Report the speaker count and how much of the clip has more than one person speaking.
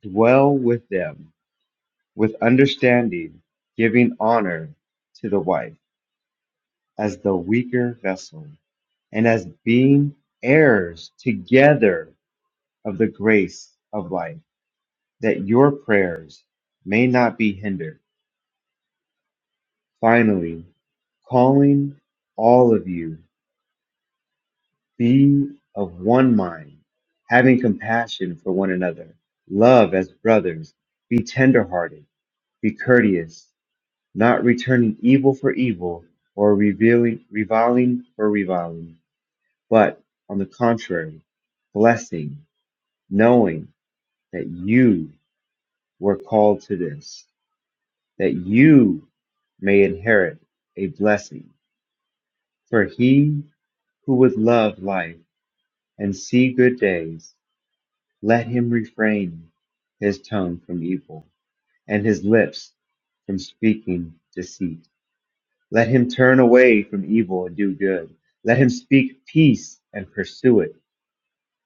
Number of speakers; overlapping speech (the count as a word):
one, no overlap